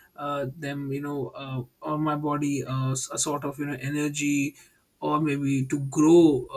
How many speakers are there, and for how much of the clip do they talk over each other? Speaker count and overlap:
one, no overlap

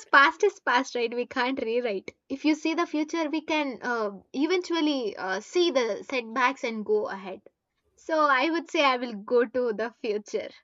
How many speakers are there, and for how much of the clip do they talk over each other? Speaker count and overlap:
one, no overlap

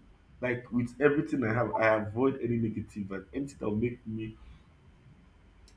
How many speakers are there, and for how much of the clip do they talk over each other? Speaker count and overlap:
one, no overlap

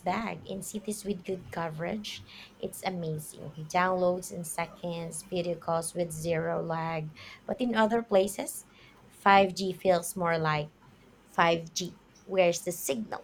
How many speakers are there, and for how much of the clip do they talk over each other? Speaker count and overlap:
one, no overlap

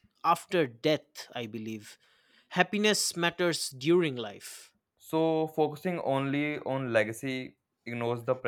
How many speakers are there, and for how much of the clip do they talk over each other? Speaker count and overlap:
two, no overlap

